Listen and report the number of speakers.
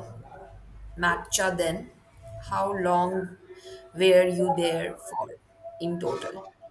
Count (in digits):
1